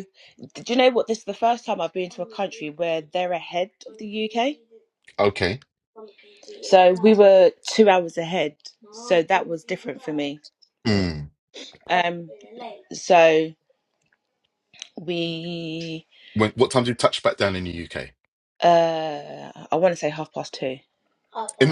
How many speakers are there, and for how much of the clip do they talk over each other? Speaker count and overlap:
2, under 1%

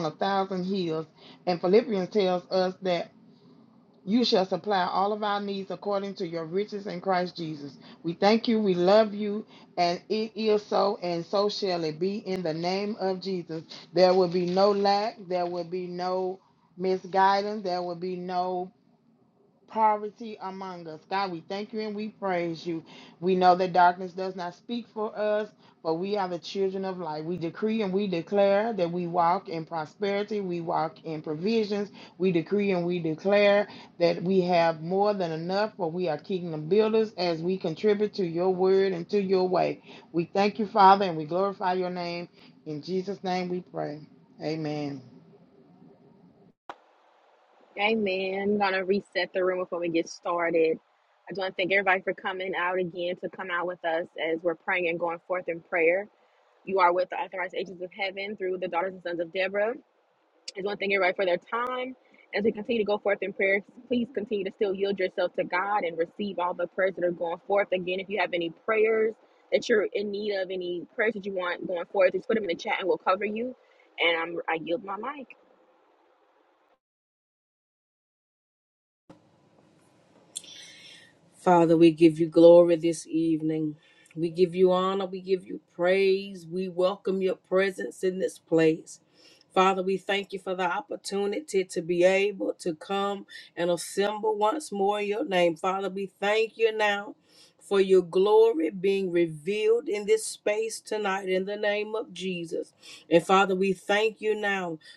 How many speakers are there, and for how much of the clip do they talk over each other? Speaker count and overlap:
3, no overlap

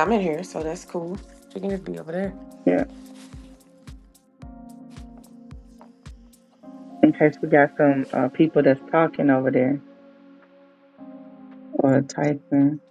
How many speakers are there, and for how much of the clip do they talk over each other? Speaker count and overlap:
2, no overlap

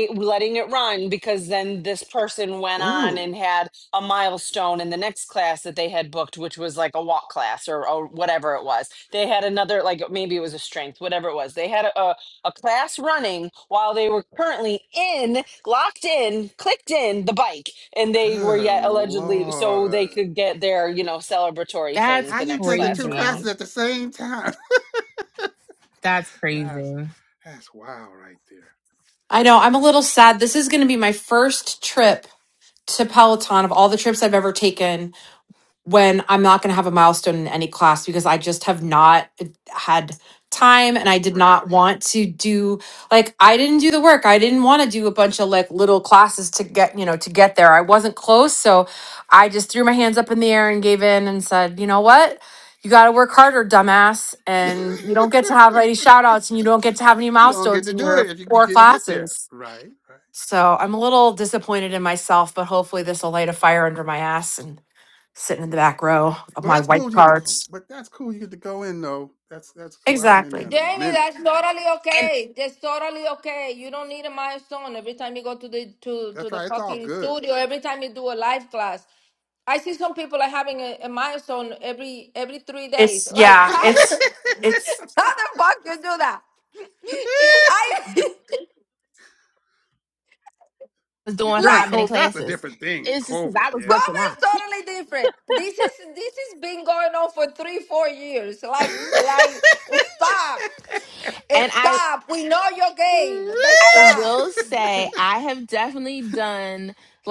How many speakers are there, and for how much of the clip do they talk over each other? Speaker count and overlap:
5, about 13%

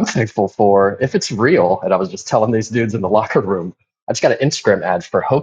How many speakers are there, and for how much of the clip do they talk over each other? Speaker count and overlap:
1, no overlap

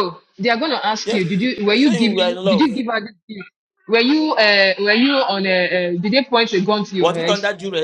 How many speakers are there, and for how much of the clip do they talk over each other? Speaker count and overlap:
2, about 20%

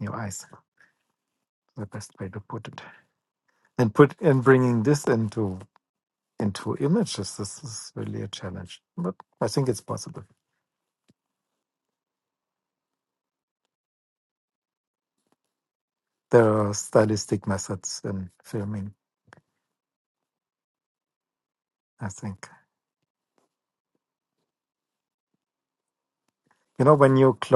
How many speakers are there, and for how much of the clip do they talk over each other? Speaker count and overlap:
1, no overlap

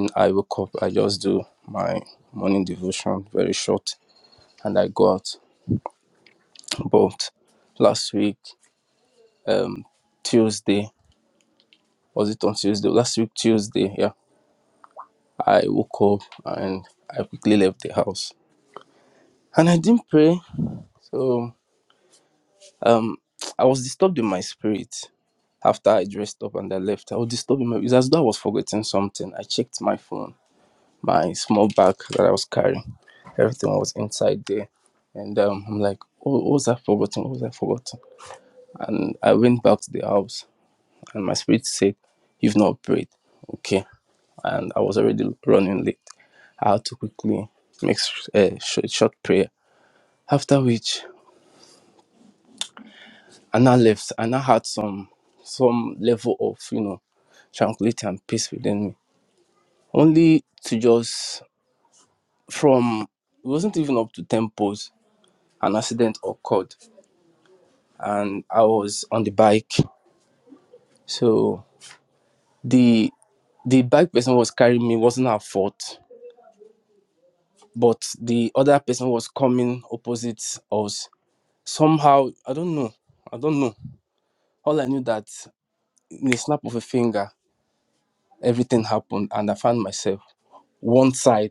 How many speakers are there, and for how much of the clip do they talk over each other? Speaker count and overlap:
1, no overlap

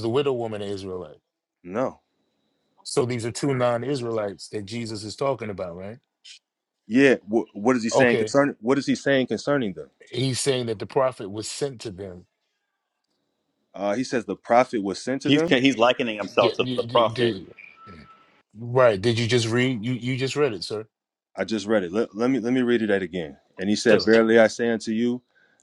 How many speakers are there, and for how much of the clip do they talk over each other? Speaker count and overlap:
3, about 8%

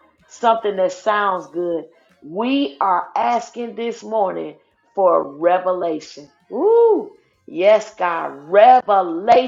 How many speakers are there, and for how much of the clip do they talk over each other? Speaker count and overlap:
1, no overlap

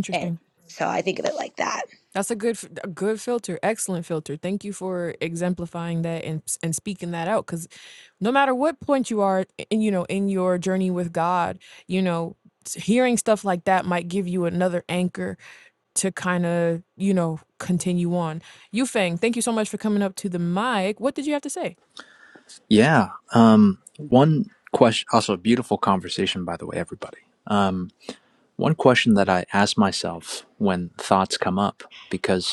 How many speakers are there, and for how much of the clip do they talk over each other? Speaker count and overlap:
3, about 1%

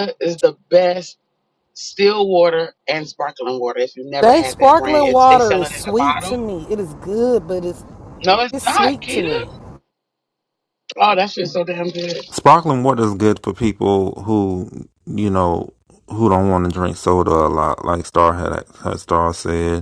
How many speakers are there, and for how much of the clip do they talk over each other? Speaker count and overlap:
3, about 15%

